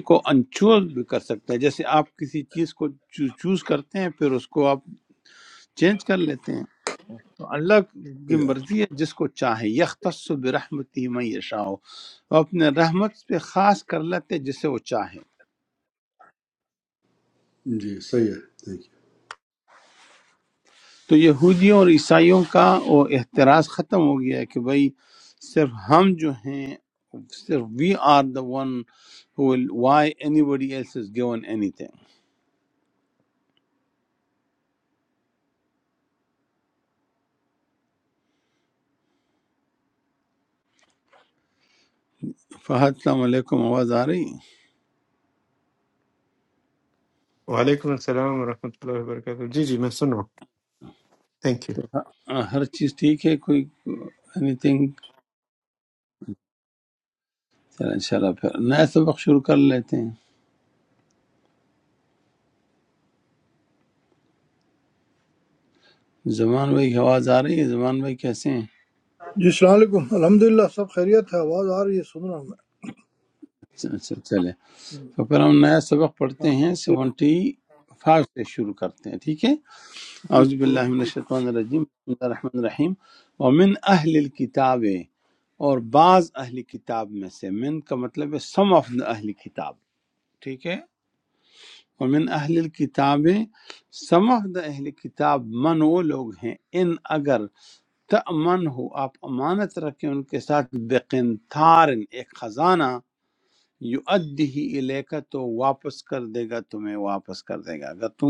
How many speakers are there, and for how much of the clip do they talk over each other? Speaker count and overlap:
4, under 1%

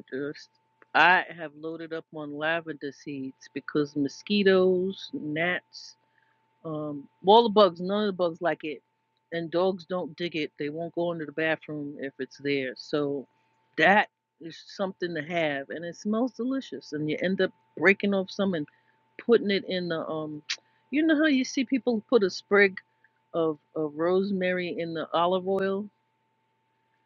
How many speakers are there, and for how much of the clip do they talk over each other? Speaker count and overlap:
1, no overlap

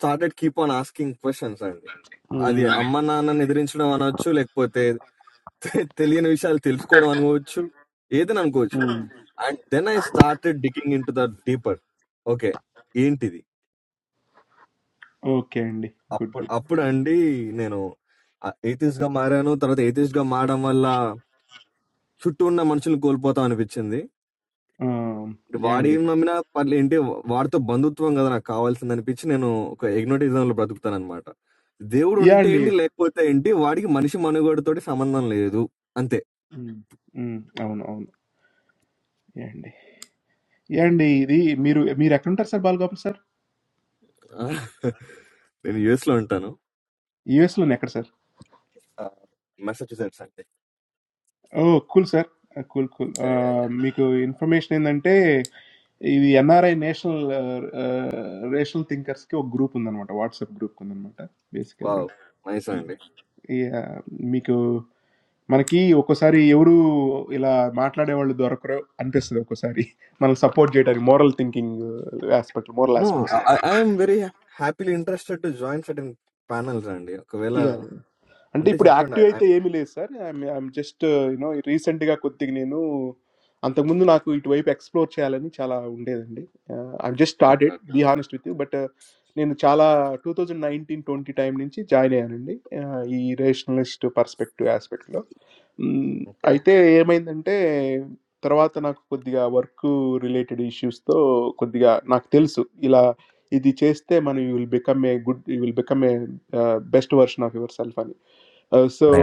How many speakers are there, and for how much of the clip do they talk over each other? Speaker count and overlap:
2, about 3%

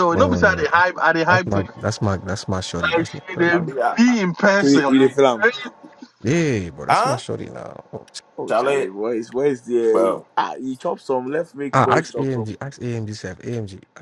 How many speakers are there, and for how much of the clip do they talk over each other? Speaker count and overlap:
4, about 28%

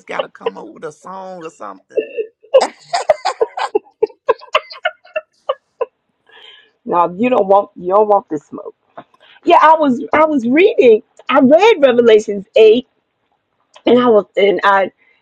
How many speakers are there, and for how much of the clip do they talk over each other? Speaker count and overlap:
2, no overlap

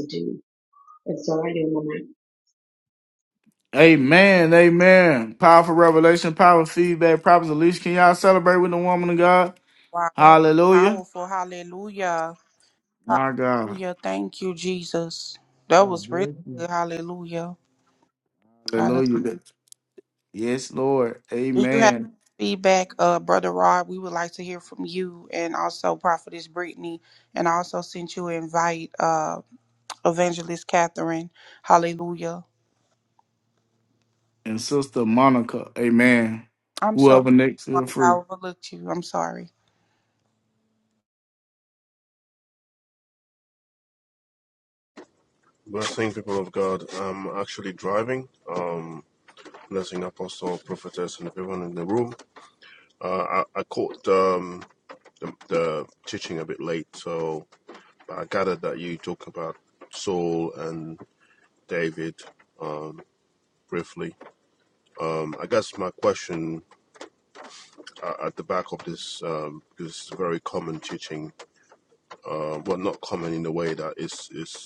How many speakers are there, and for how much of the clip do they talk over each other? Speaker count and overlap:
4, about 3%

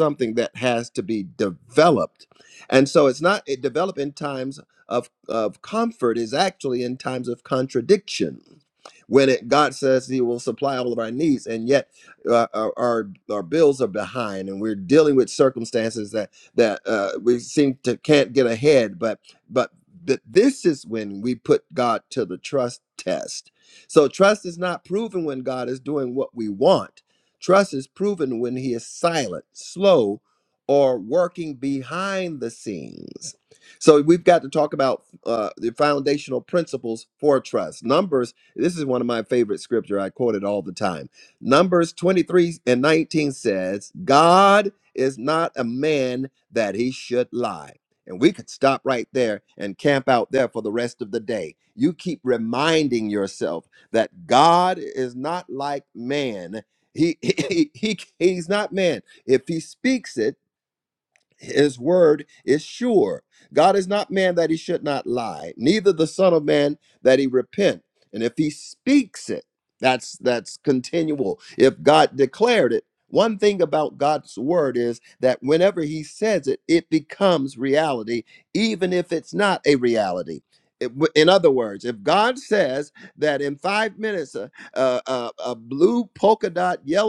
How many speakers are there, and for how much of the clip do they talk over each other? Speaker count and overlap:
1, no overlap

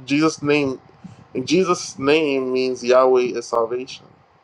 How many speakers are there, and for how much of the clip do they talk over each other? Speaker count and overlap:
1, no overlap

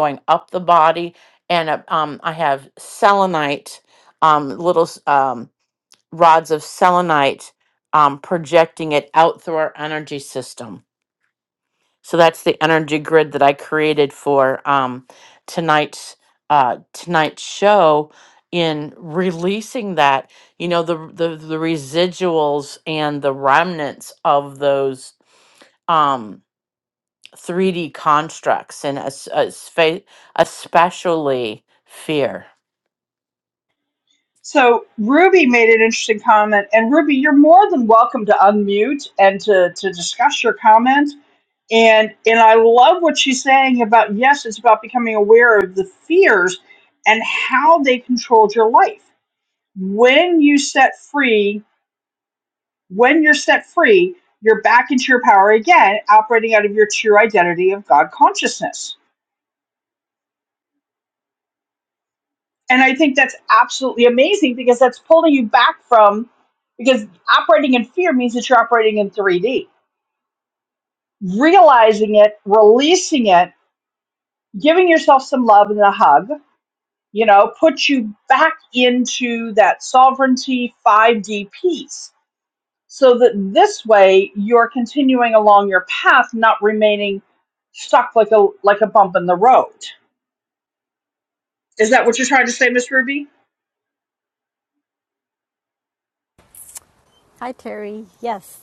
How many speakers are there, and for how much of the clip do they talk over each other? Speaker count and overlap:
3, no overlap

